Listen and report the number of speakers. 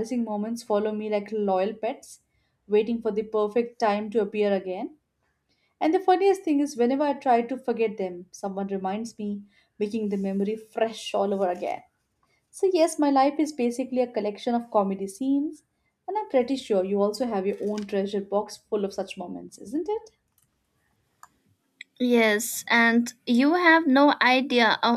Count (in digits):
2